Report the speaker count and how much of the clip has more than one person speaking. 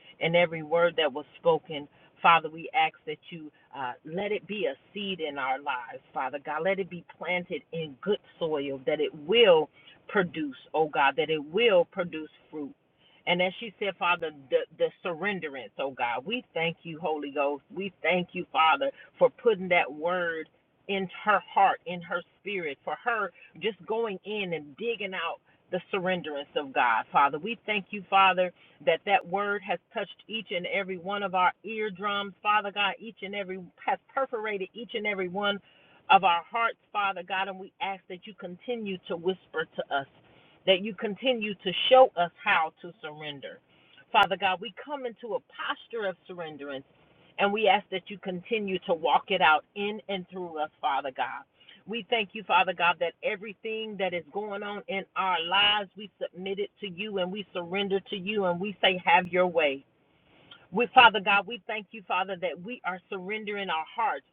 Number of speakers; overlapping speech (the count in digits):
1, no overlap